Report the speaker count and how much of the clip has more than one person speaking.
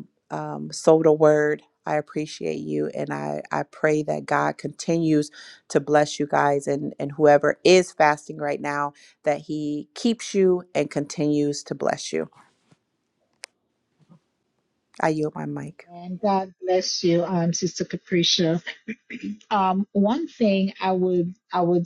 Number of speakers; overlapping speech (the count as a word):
two, no overlap